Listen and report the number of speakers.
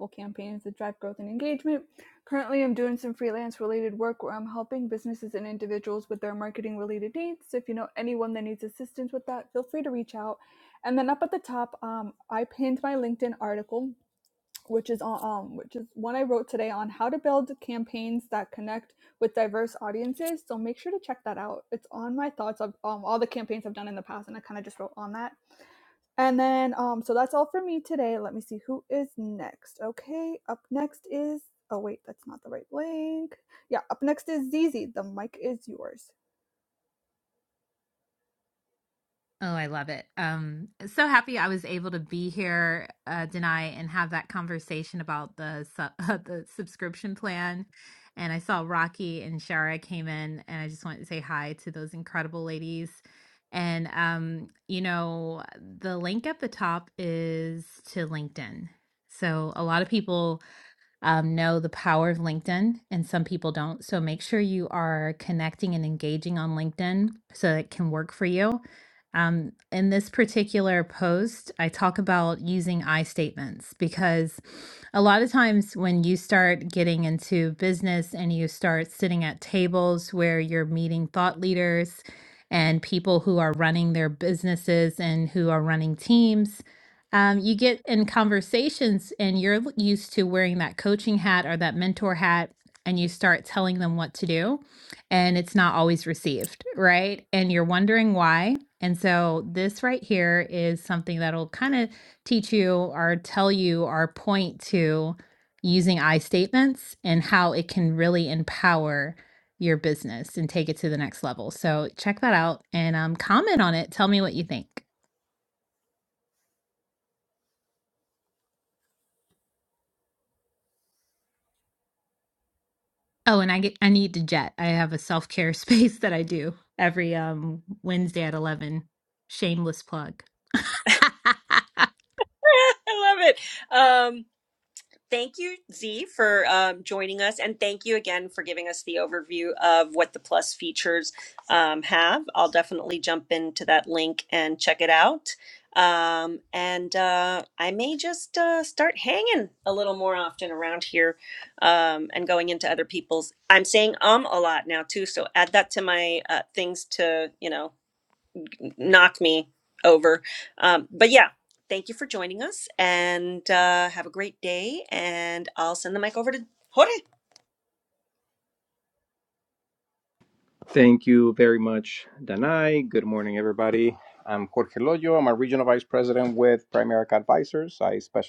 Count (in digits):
4